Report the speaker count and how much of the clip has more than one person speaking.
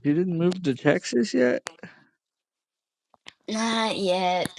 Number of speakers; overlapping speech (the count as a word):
two, no overlap